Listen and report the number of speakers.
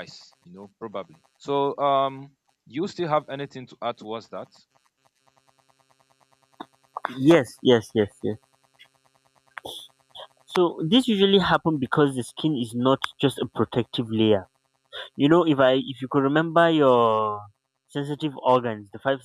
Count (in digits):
2